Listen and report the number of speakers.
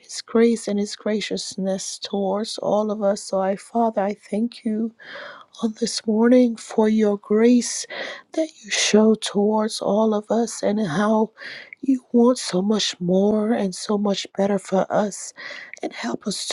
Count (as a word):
one